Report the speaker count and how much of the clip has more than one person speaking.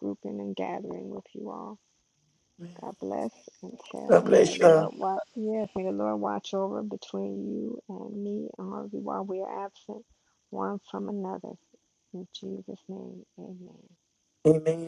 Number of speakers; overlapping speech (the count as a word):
two, about 5%